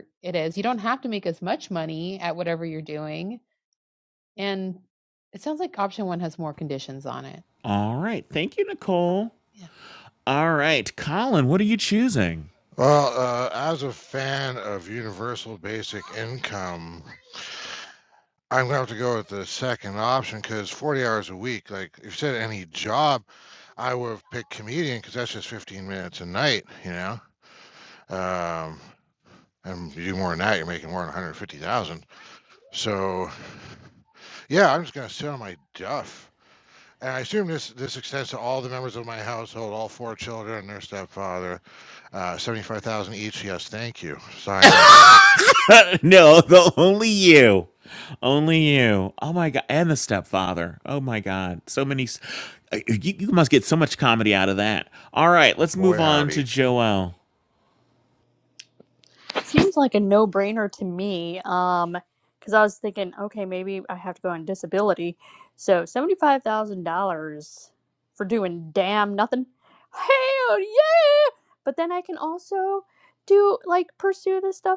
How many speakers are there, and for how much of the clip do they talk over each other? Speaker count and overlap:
four, about 1%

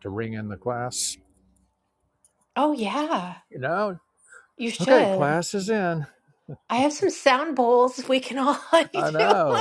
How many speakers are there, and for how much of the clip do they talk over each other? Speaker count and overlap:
two, about 13%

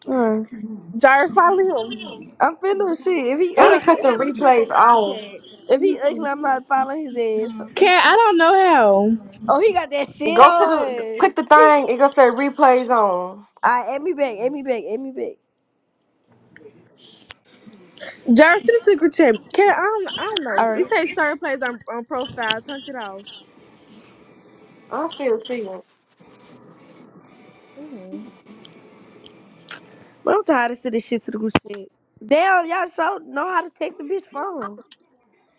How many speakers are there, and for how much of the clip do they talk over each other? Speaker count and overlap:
three, about 10%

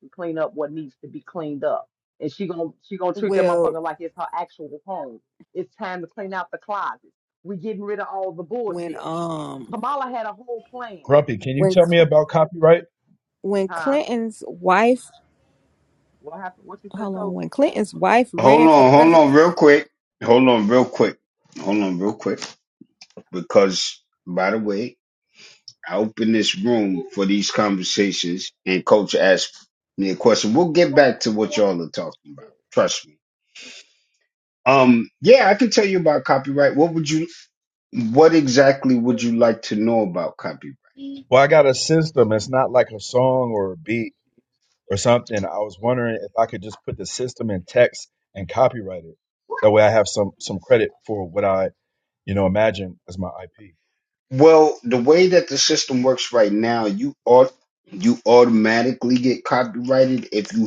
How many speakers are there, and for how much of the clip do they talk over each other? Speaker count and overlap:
four, about 5%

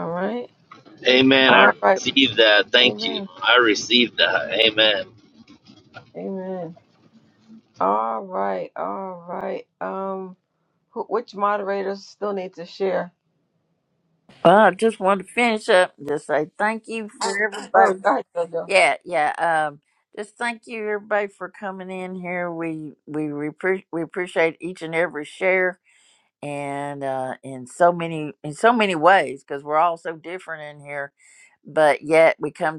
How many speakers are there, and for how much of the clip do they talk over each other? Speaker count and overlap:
three, about 4%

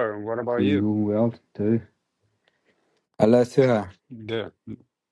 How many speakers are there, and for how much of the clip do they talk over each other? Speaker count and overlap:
two, about 5%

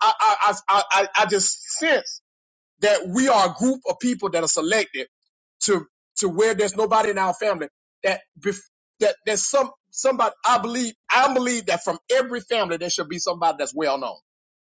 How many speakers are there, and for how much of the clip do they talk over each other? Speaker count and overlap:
one, no overlap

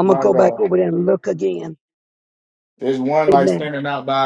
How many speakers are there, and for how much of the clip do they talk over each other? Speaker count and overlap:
two, about 23%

